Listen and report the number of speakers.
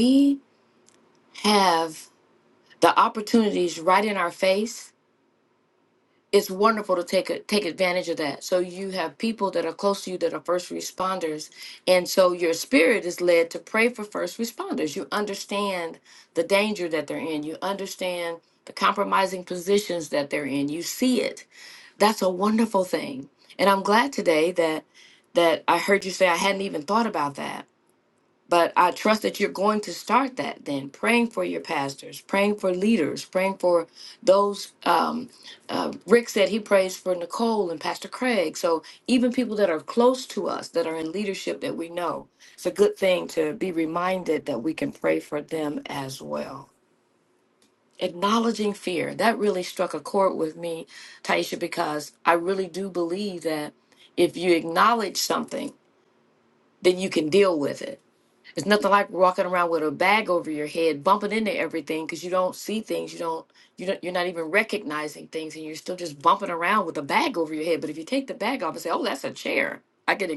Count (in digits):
1